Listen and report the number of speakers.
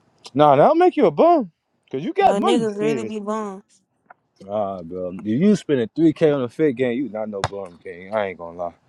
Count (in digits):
2